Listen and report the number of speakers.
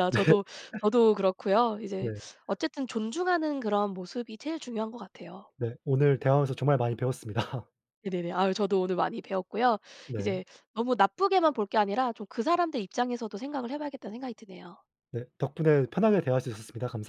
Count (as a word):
two